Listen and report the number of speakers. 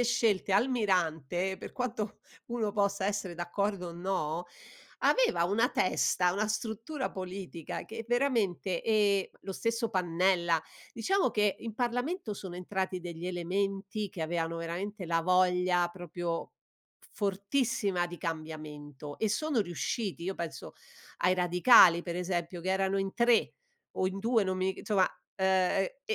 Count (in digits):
1